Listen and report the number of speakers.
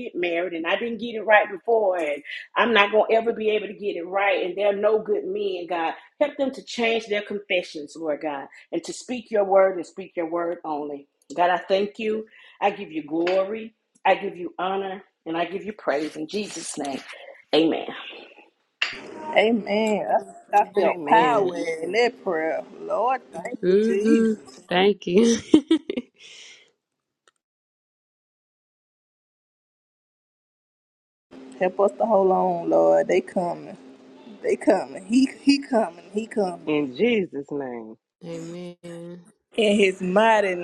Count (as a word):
four